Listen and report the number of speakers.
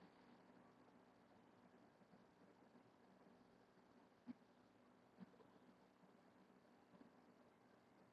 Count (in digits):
0